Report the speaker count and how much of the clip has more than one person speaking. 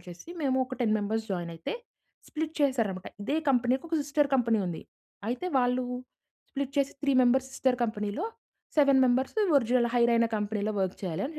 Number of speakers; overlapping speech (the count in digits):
1, no overlap